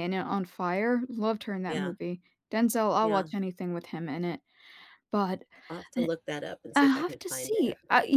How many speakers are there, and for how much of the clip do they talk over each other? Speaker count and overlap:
2, about 20%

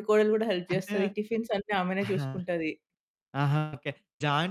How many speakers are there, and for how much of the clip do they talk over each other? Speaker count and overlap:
2, about 14%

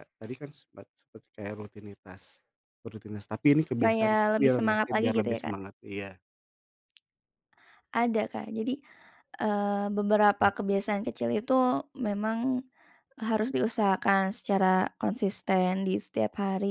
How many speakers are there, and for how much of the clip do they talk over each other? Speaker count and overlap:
2, about 11%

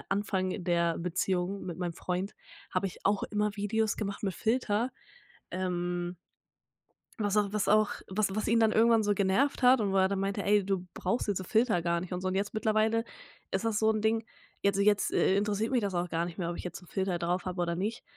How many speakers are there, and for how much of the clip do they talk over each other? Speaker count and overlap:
1, no overlap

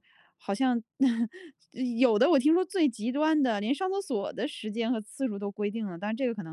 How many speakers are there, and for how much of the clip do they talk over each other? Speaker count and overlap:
1, no overlap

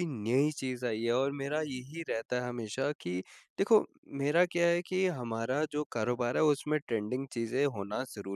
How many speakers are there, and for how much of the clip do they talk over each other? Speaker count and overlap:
1, no overlap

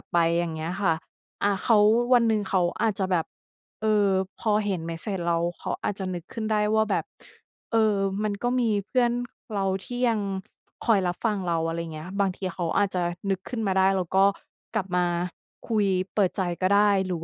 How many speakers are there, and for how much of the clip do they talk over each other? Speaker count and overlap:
1, no overlap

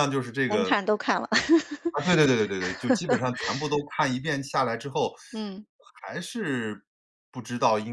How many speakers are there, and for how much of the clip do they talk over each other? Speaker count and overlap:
2, about 4%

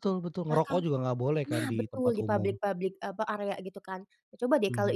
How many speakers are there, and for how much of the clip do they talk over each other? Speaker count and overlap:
2, about 34%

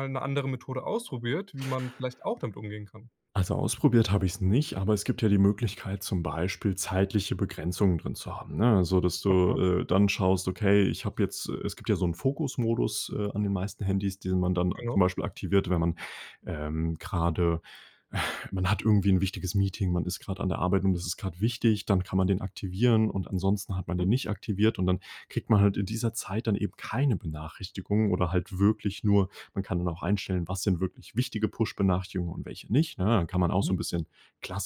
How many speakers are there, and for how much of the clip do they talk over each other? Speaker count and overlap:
2, about 2%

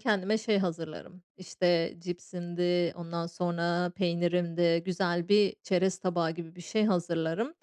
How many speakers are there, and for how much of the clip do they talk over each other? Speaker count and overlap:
1, no overlap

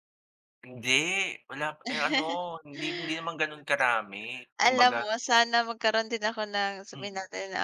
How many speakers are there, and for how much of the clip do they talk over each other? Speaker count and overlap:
2, about 7%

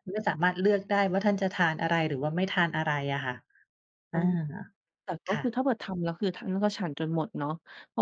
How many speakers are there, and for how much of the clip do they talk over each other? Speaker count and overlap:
2, about 4%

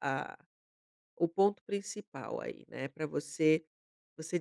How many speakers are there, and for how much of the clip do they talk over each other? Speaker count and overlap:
1, no overlap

